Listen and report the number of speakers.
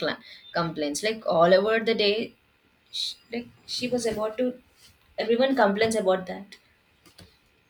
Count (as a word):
one